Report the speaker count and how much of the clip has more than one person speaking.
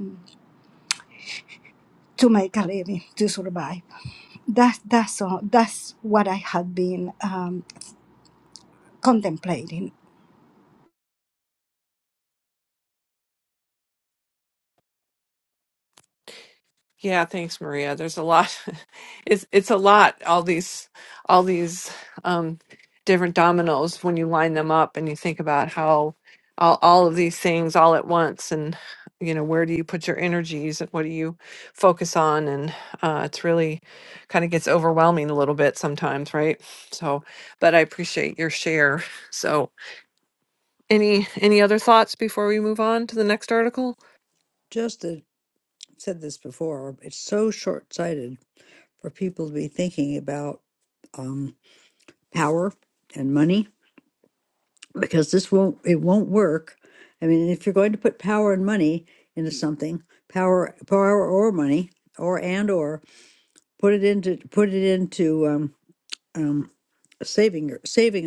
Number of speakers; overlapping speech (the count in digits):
3, no overlap